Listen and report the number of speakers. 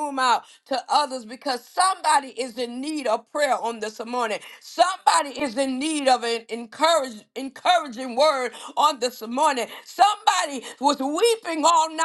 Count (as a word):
one